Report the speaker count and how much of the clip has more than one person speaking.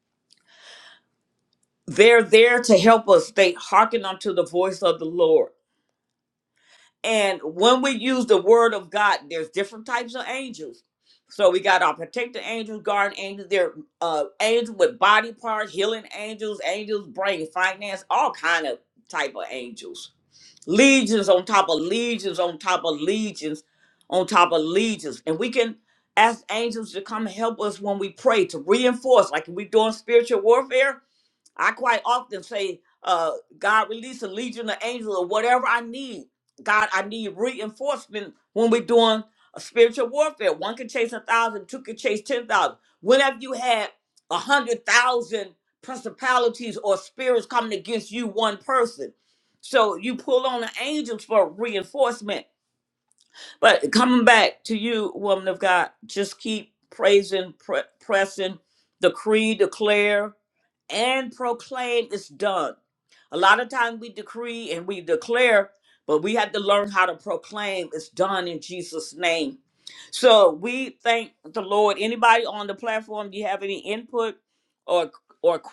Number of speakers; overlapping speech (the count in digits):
1, no overlap